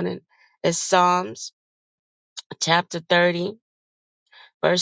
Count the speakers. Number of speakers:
1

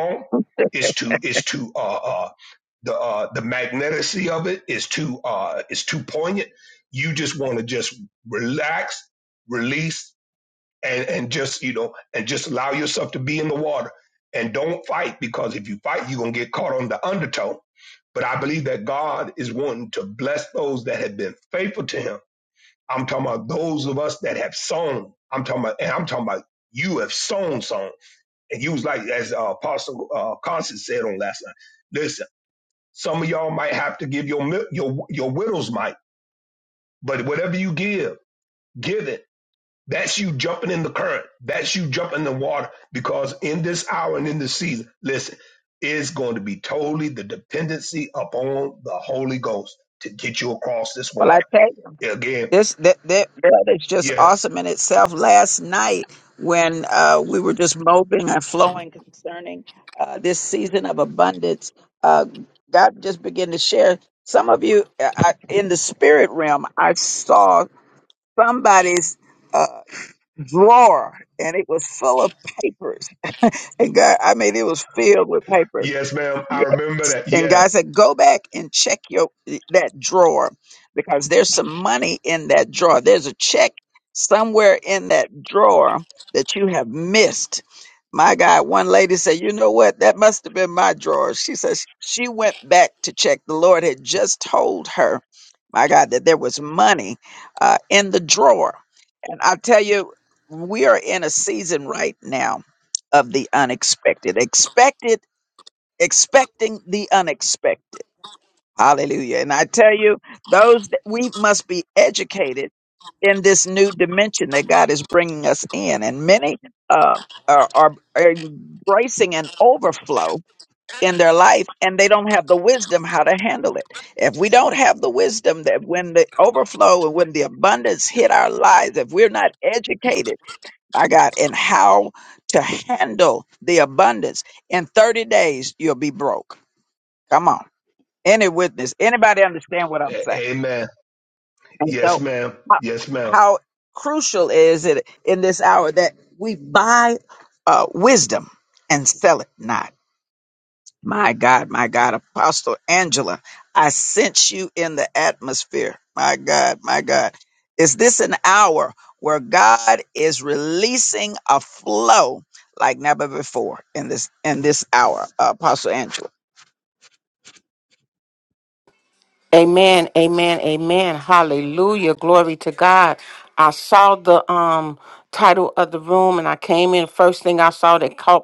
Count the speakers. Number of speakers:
3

